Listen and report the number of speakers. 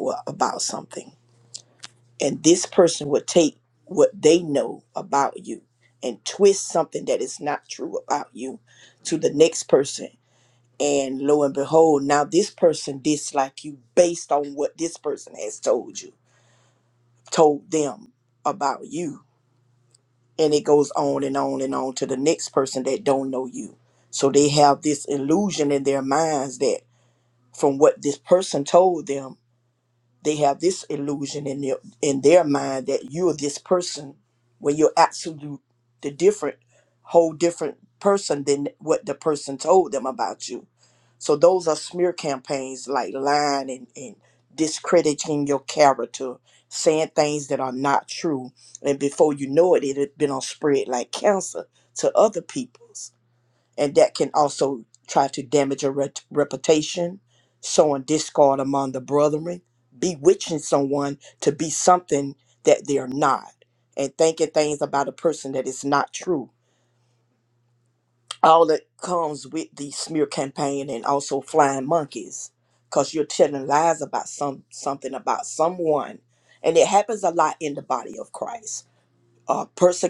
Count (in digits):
1